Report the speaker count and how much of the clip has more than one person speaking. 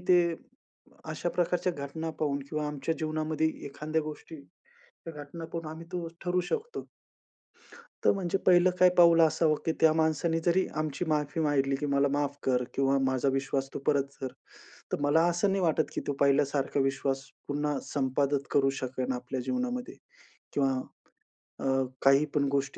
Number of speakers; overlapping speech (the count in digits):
1, no overlap